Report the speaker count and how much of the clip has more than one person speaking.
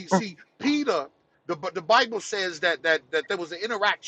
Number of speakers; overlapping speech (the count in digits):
1, no overlap